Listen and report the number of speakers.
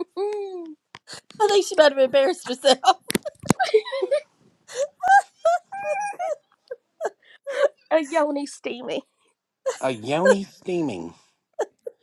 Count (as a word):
three